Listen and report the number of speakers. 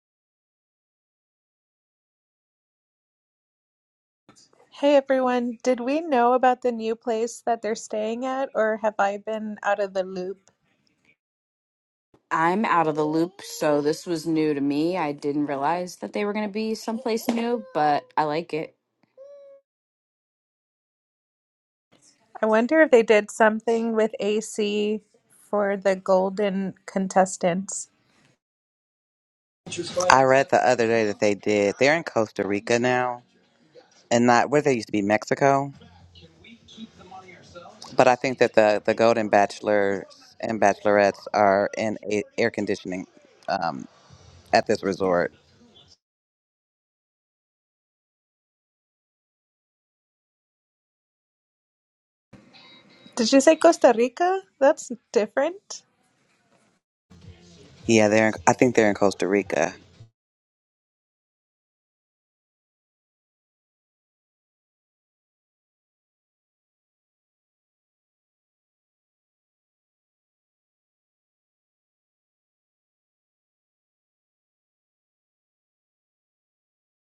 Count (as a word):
three